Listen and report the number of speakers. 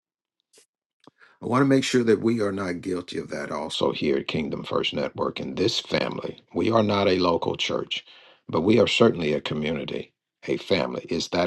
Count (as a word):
one